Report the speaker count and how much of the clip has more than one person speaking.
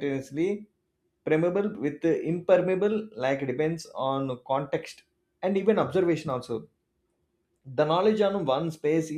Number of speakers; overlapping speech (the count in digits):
1, no overlap